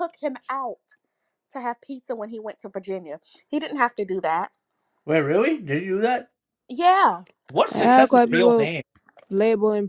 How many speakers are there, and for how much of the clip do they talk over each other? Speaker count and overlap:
three, about 10%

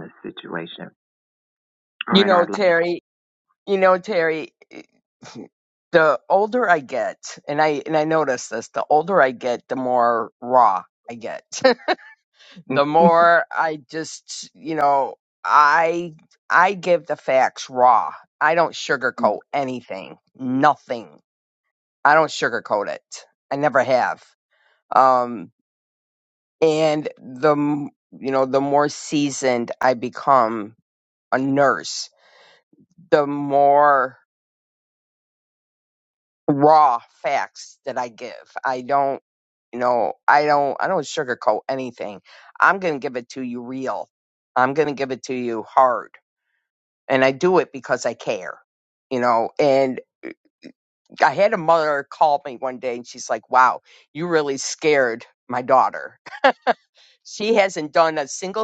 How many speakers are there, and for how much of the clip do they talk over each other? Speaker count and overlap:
two, about 1%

